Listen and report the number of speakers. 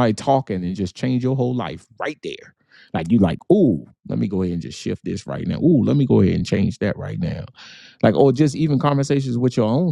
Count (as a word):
one